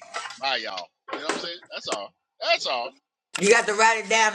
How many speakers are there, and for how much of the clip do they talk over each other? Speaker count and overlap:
2, no overlap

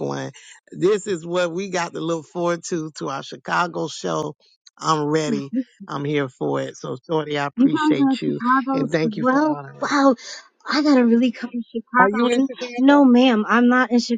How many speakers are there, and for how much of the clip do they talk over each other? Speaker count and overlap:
2, about 24%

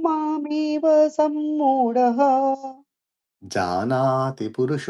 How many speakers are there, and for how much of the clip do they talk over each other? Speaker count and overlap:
2, no overlap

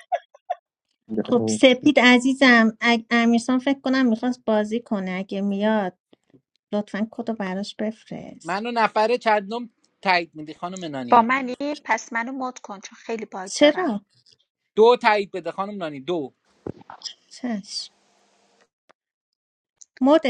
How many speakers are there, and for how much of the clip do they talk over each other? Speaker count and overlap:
3, about 2%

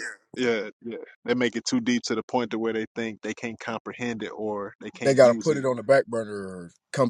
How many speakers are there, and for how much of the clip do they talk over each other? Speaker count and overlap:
2, about 9%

